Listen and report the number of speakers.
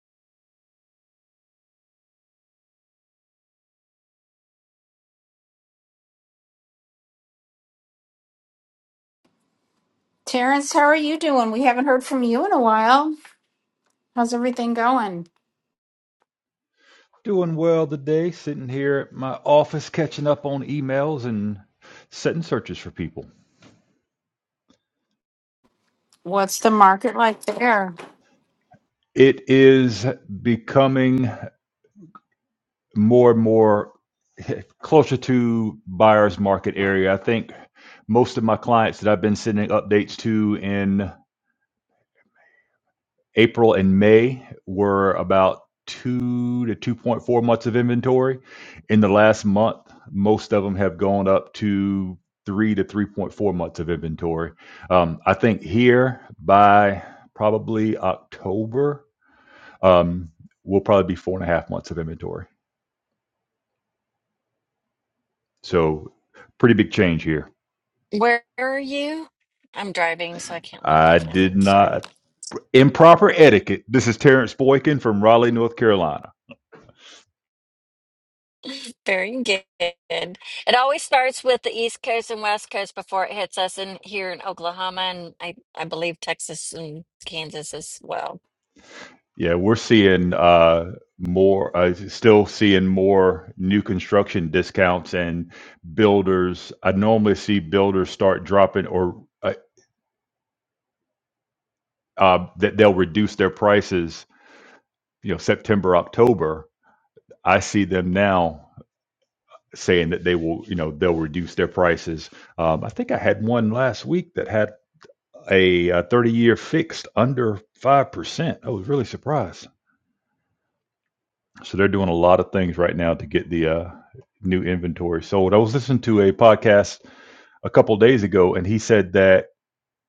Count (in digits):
3